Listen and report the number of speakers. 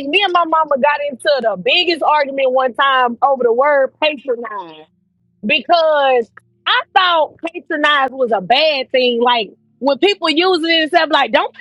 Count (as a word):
one